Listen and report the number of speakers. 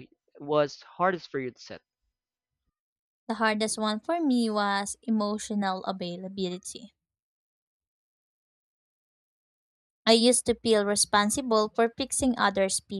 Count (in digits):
2